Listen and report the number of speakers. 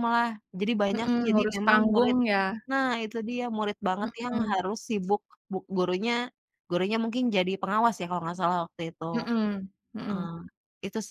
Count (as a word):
two